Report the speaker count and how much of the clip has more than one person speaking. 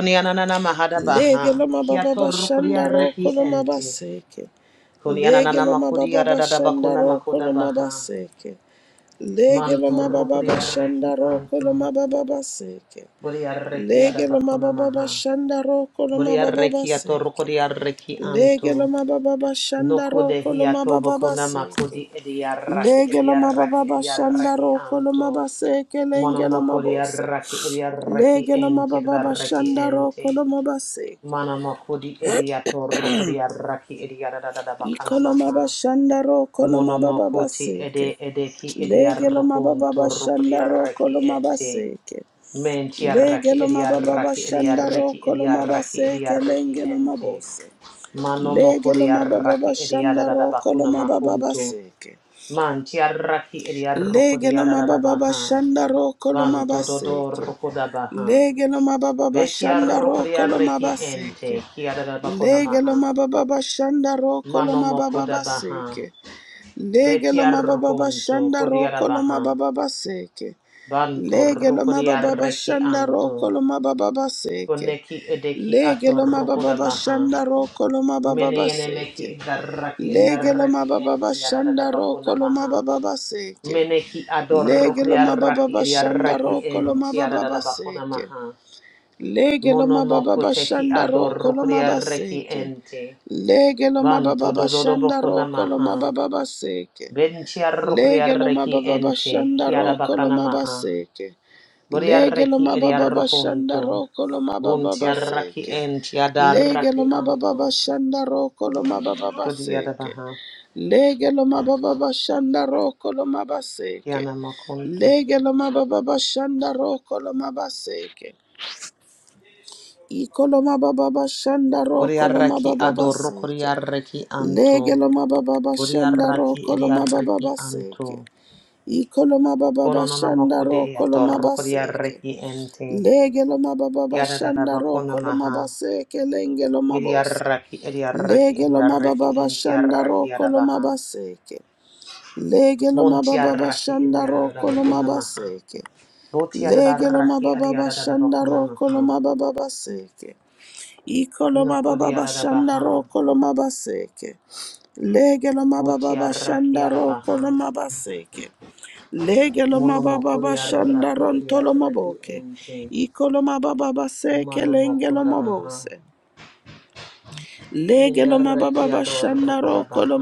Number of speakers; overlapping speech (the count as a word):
two, about 55%